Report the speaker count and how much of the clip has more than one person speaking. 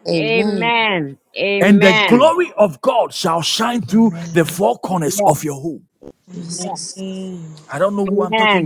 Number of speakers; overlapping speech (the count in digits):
4, about 32%